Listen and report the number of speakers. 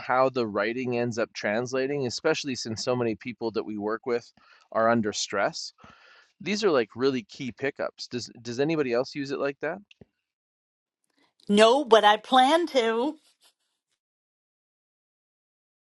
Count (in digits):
2